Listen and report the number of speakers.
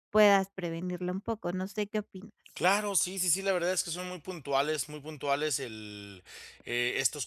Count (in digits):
2